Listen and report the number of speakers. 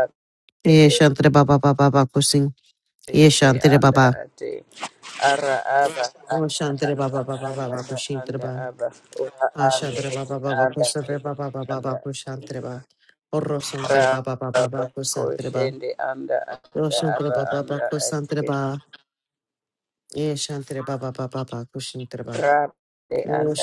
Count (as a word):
two